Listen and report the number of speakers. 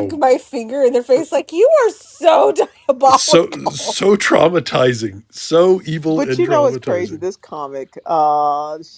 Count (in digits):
3